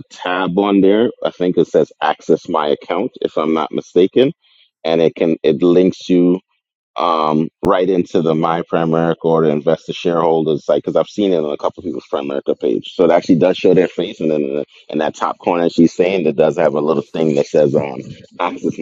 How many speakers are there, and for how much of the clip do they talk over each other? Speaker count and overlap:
1, no overlap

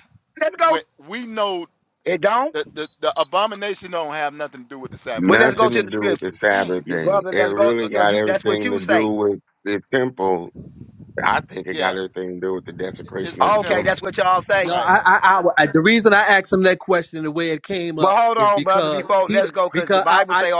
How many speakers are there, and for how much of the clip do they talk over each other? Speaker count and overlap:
4, about 37%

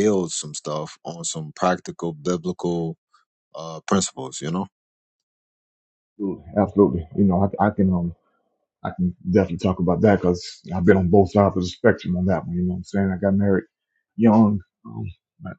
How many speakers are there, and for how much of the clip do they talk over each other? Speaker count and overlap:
2, no overlap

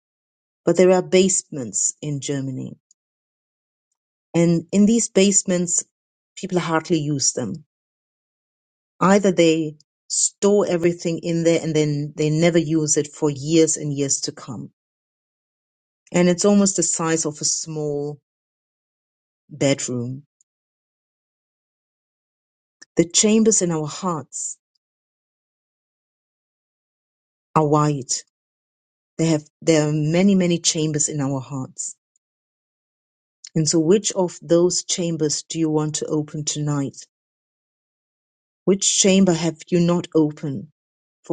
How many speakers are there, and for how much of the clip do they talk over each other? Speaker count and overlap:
1, no overlap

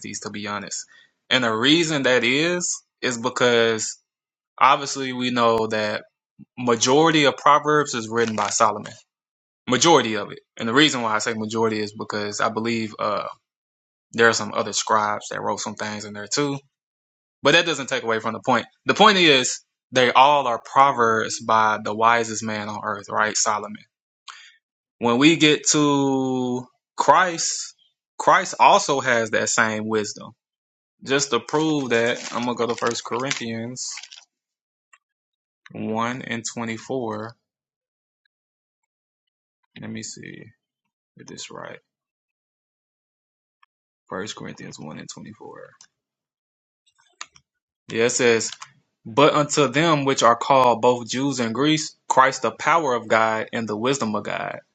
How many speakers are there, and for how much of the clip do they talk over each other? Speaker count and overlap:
1, no overlap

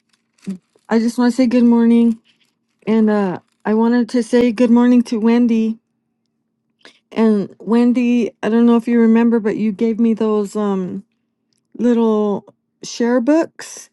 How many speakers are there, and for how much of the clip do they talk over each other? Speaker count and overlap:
1, no overlap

